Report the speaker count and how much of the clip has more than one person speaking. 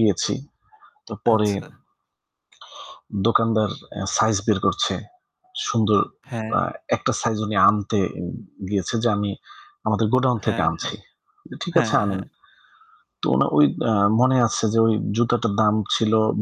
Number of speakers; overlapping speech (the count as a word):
two, about 8%